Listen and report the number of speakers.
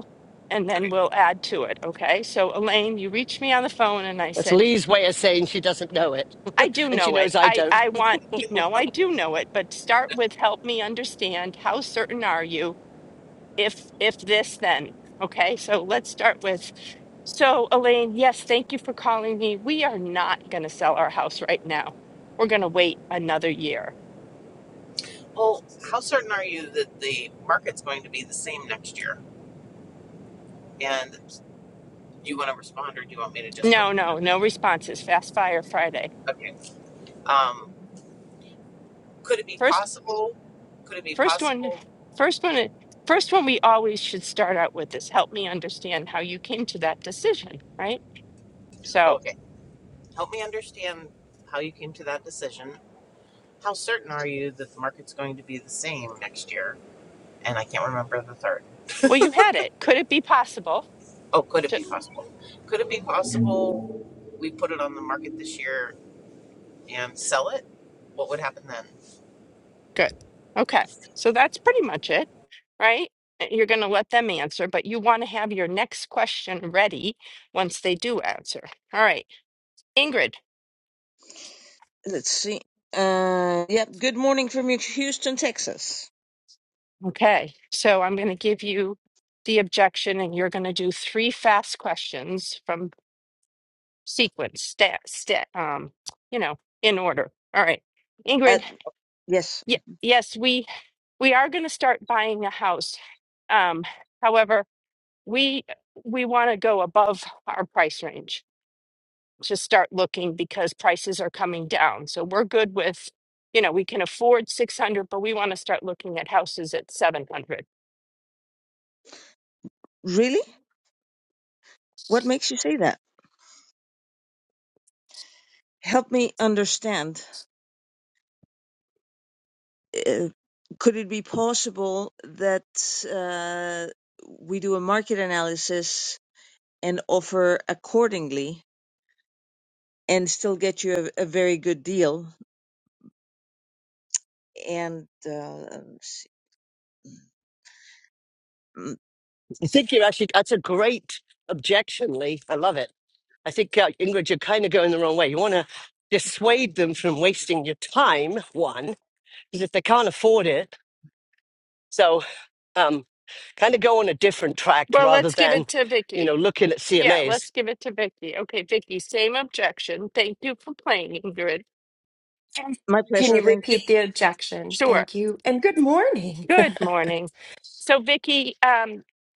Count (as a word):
five